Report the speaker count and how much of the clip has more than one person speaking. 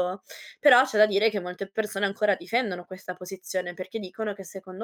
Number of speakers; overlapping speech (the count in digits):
1, no overlap